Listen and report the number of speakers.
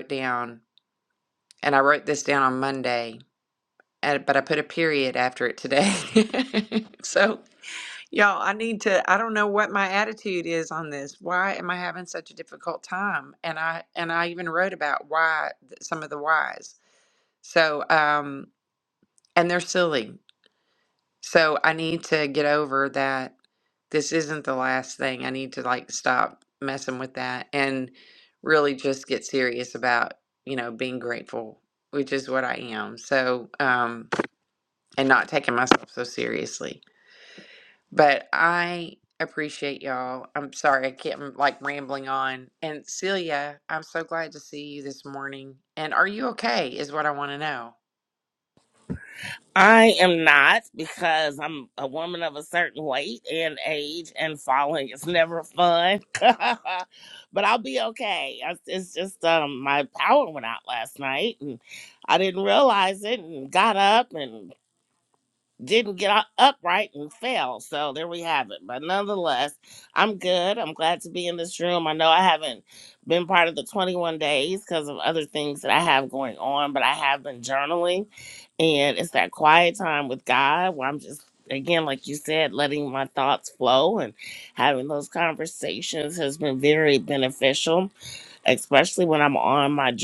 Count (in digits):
2